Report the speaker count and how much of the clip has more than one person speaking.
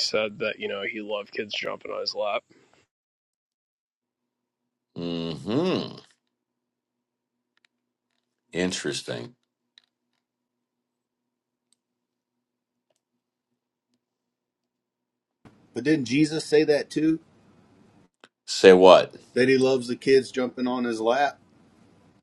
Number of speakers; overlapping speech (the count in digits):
3, no overlap